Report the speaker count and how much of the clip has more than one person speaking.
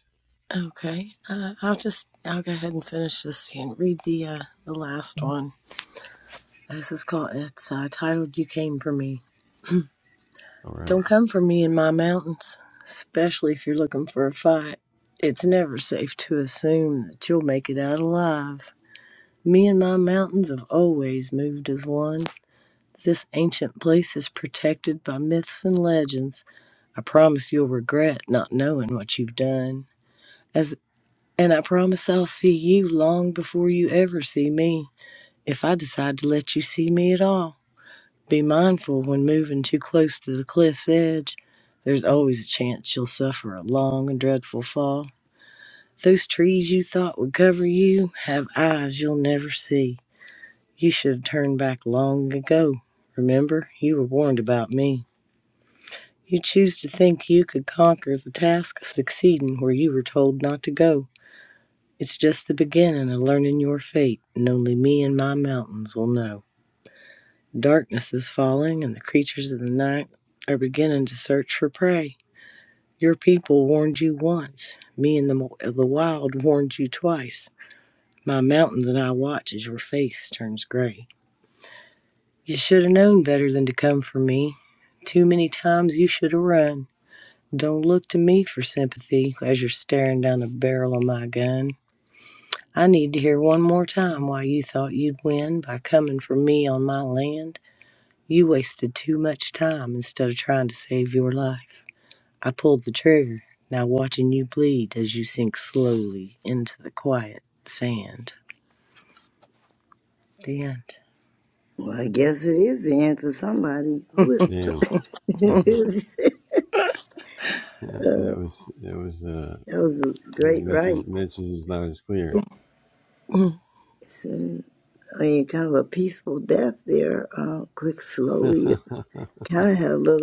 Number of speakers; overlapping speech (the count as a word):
three, about 1%